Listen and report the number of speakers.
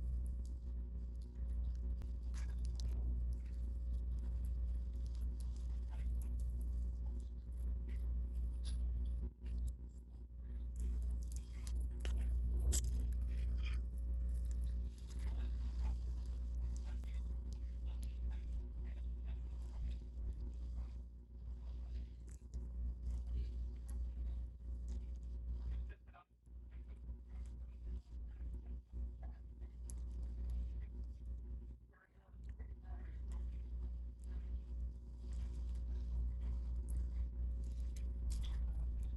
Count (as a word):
zero